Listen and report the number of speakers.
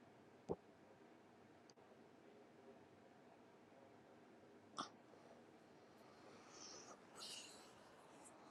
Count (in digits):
0